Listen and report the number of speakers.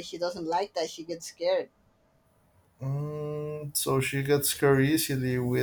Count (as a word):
two